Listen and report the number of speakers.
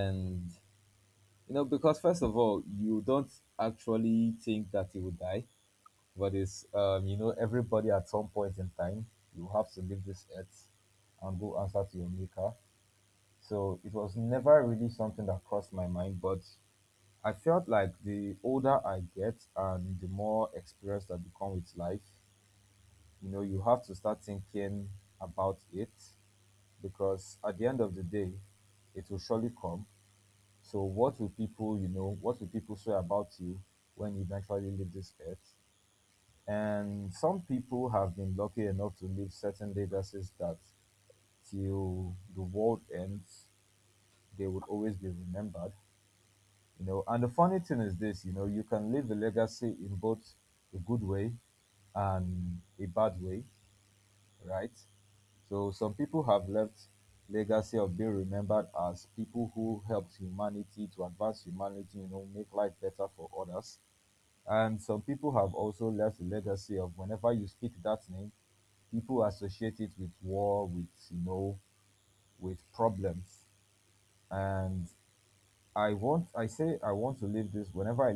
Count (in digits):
1